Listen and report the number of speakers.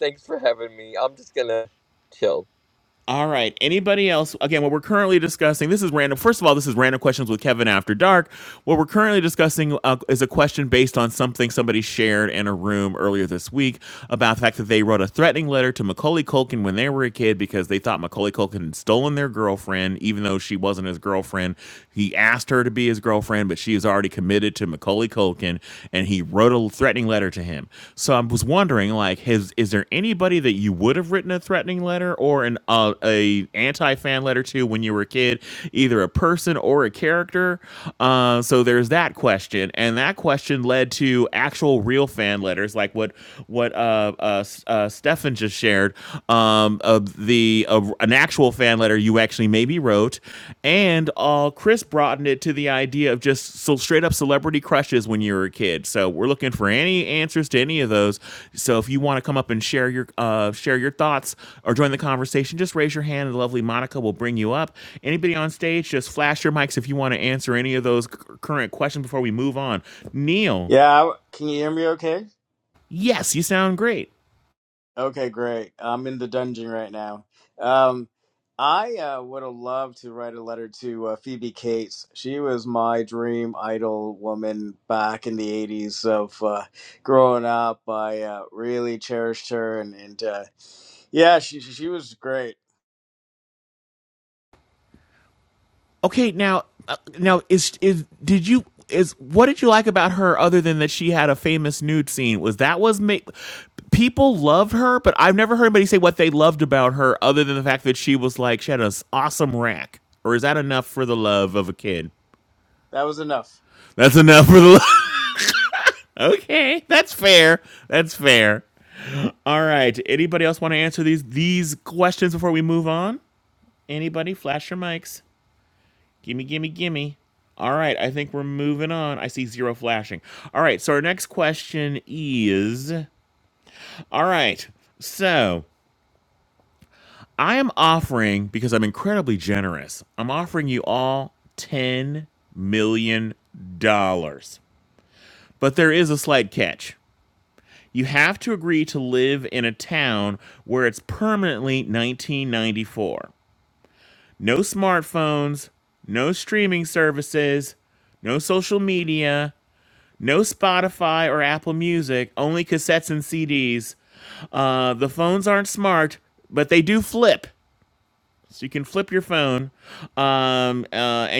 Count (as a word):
three